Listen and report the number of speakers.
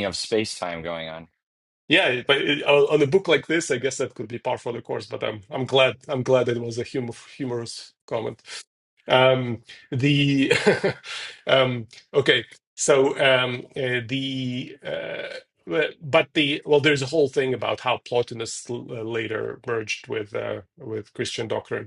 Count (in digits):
2